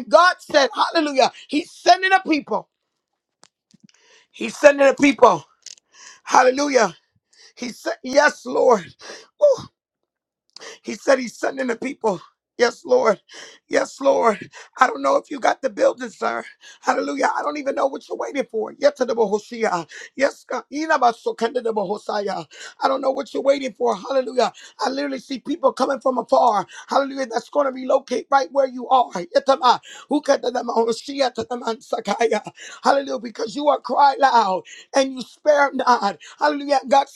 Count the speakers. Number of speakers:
1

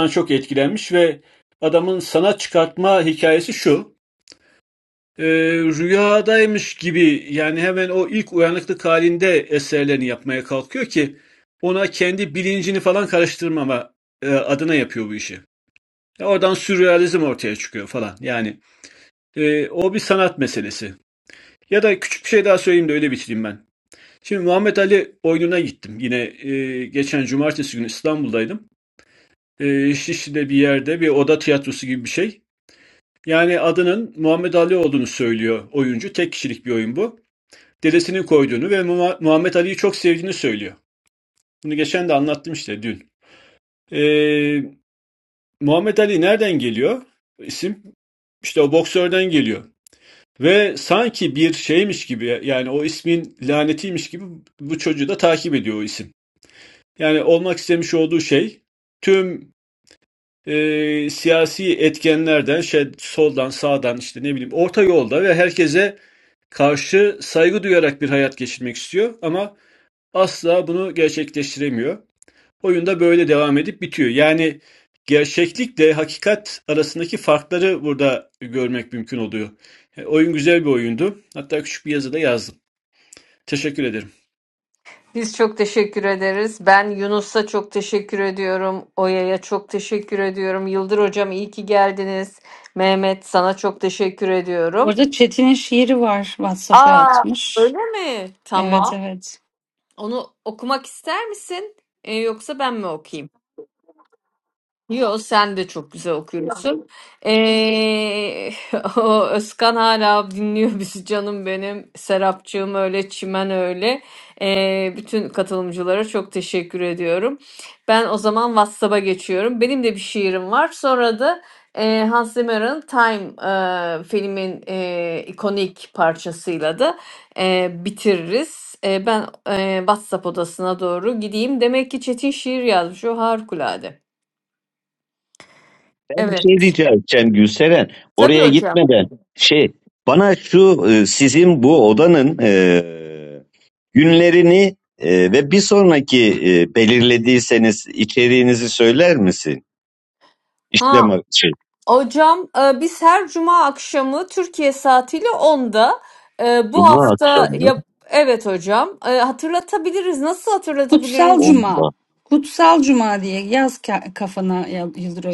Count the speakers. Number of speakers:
4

